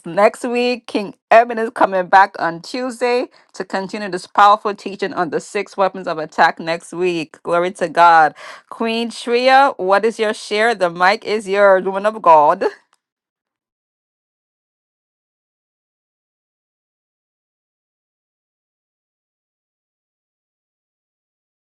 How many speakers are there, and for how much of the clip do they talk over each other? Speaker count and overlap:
1, no overlap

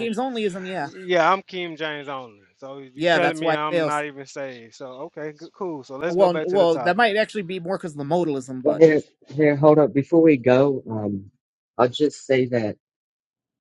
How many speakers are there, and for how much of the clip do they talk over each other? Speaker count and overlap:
3, about 18%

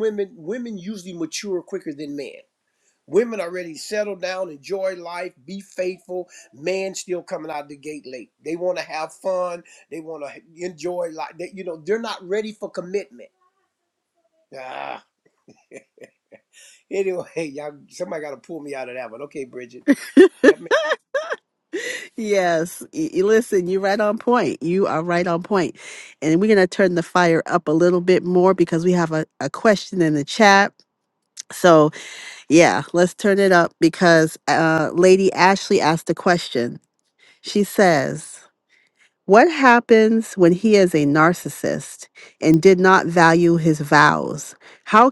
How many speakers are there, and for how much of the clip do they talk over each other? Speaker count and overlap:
2, no overlap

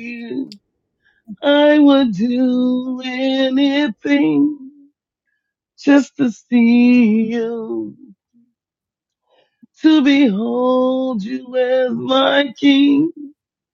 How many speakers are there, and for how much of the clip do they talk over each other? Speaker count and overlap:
1, no overlap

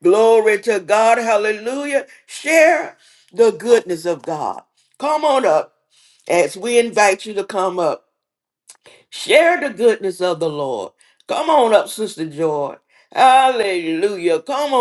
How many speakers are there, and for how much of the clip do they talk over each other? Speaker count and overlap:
1, no overlap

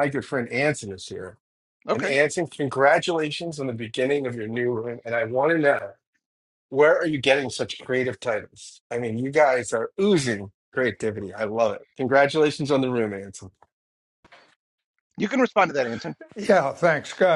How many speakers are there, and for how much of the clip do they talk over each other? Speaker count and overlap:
3, about 1%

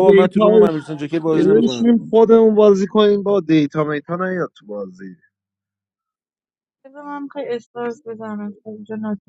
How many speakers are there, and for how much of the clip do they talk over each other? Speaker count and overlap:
3, about 9%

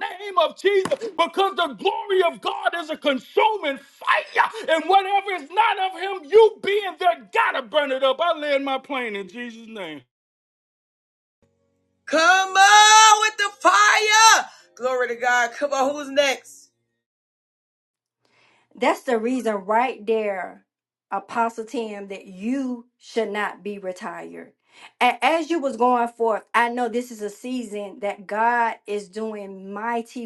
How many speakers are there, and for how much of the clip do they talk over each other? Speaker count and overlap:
3, no overlap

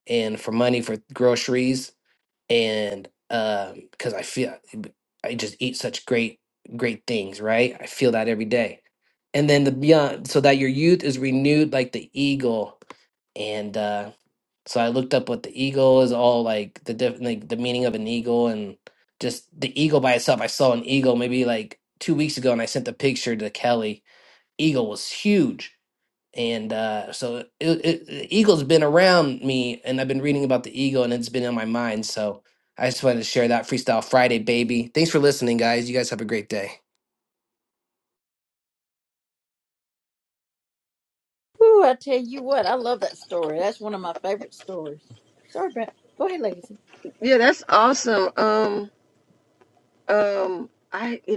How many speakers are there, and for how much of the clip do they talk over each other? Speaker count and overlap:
3, no overlap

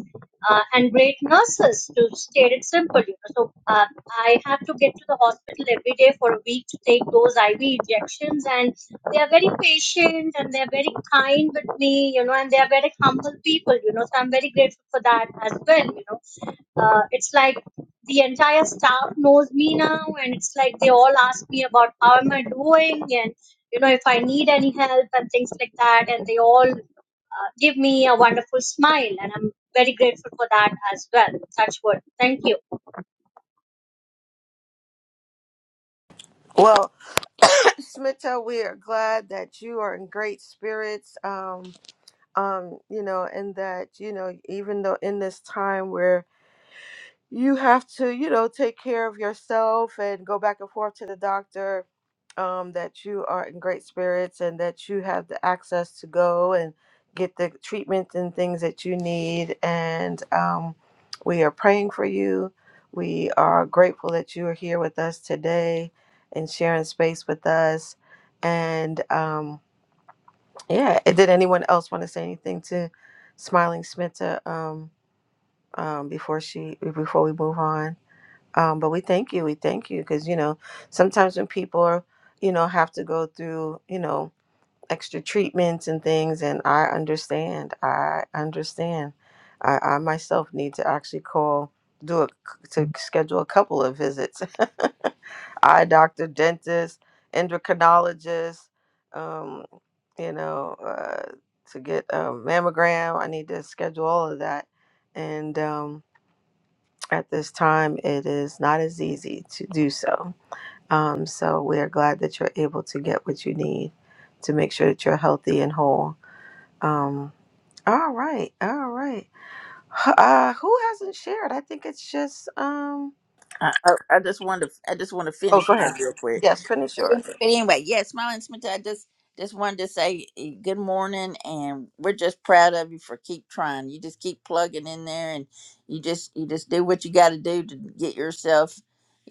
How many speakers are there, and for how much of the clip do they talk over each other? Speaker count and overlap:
3, about 1%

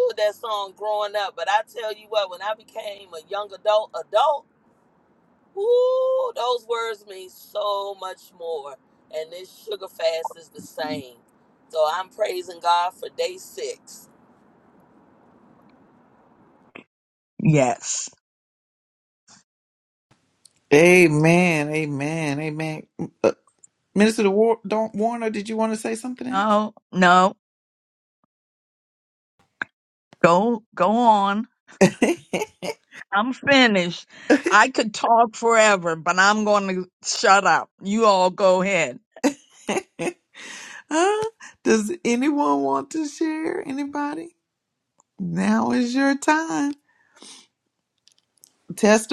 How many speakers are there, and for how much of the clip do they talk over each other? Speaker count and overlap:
3, under 1%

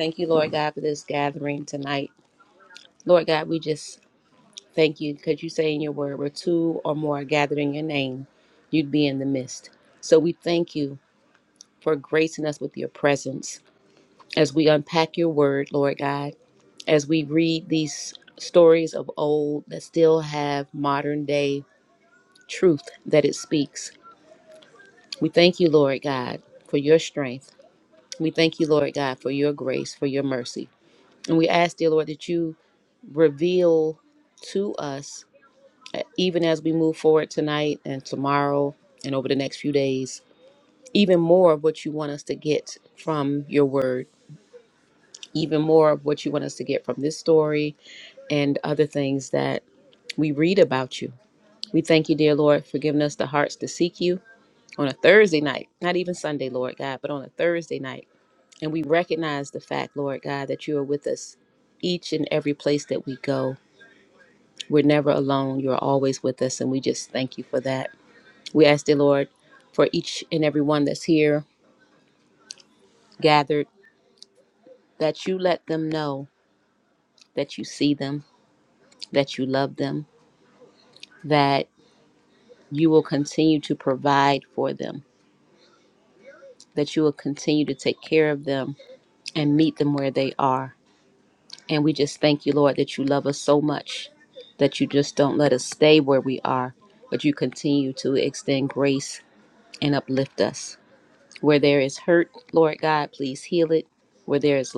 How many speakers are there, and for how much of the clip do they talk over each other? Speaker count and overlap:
1, no overlap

